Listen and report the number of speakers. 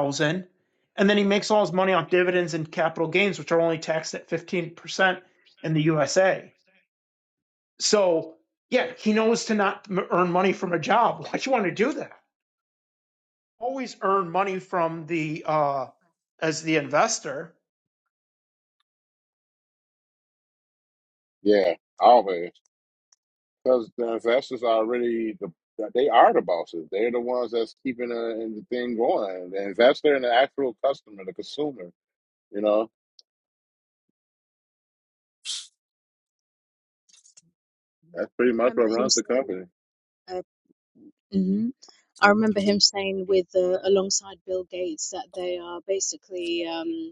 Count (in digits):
3